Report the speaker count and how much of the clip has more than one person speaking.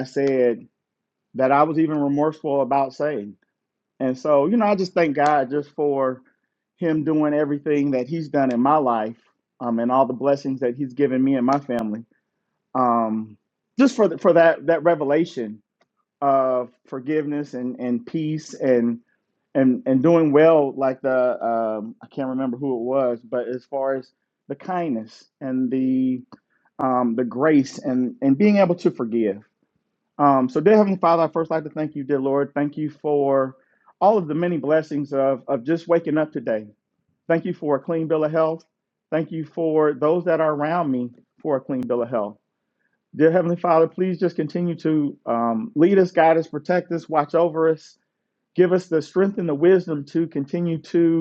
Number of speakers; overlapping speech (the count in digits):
1, no overlap